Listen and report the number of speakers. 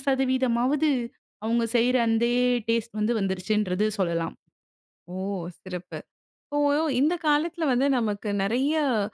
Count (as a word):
two